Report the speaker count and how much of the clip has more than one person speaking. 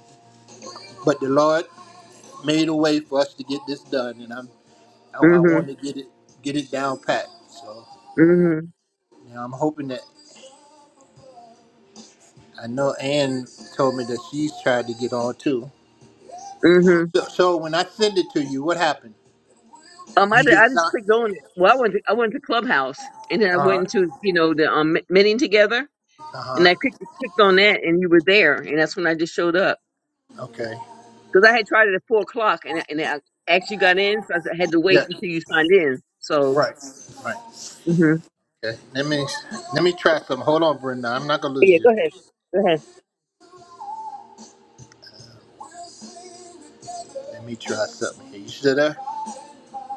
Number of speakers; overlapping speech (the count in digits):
2, about 4%